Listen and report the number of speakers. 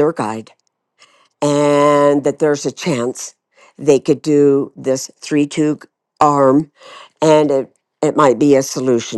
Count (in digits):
1